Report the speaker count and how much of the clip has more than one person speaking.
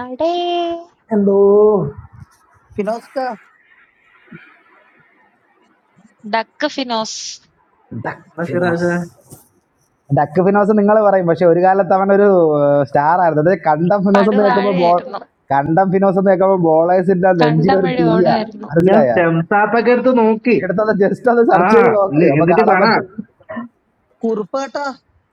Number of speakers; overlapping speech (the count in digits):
4, about 15%